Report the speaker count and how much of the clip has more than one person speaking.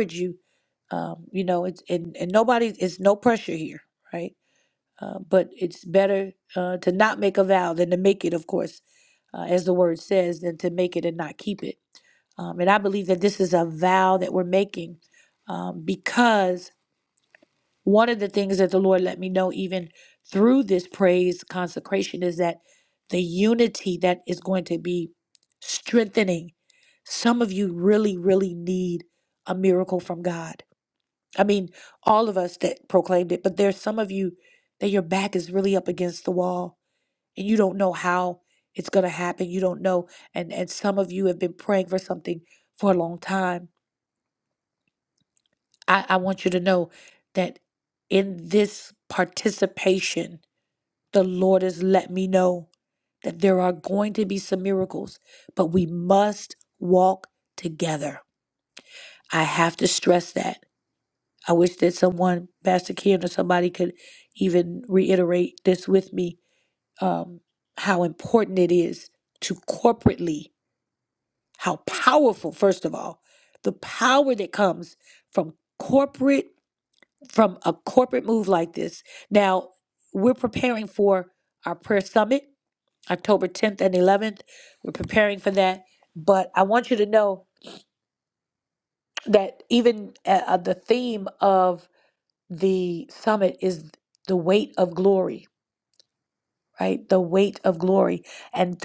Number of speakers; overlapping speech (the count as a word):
one, no overlap